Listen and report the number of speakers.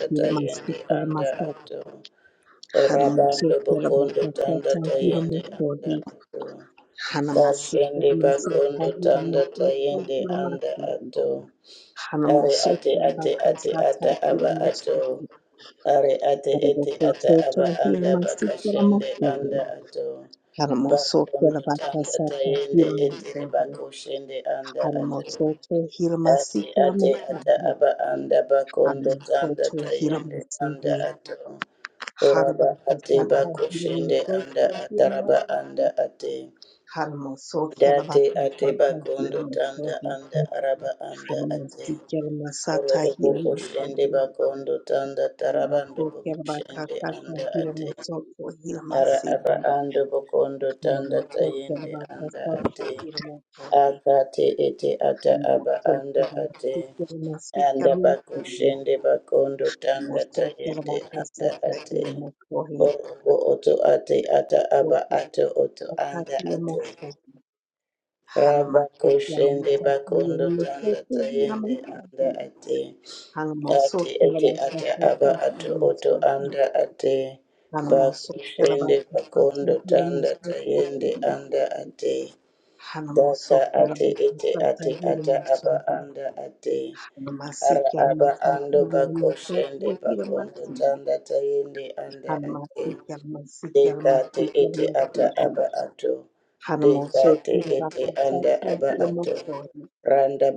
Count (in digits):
2